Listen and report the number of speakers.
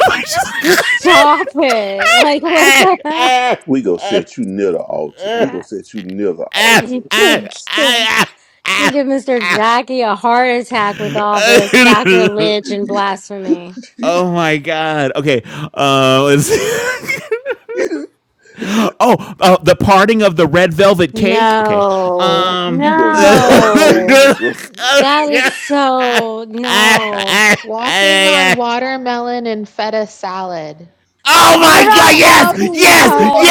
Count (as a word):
four